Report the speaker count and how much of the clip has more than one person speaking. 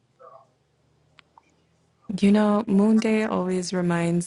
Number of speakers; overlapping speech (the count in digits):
1, no overlap